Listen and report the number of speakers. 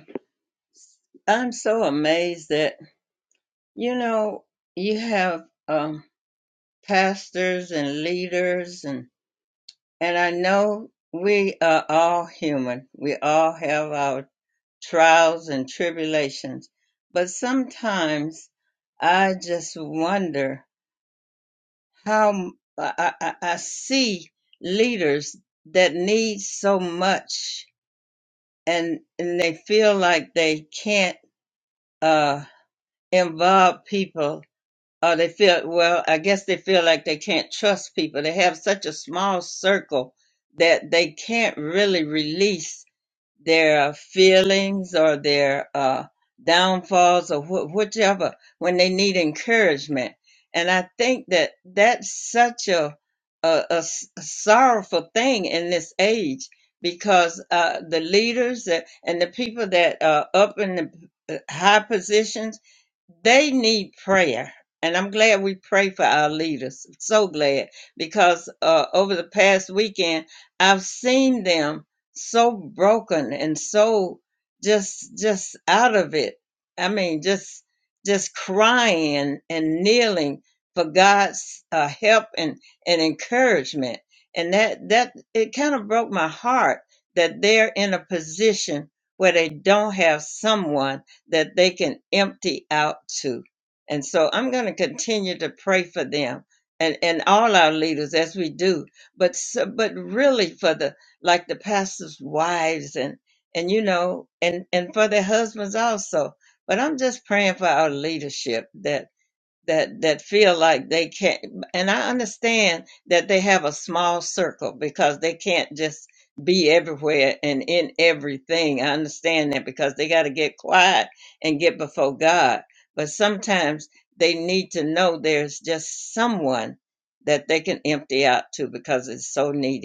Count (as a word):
one